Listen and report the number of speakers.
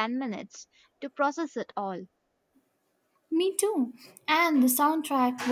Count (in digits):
2